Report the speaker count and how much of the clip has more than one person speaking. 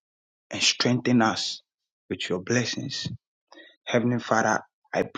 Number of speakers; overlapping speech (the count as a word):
one, no overlap